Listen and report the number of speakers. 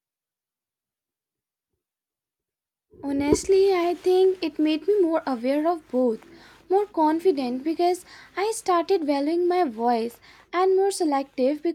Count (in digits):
1